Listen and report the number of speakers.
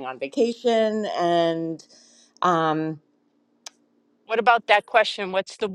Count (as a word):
two